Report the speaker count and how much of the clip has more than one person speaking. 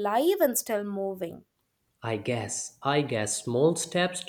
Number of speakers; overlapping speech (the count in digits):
2, no overlap